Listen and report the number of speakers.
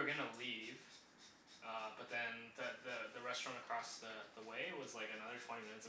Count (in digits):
1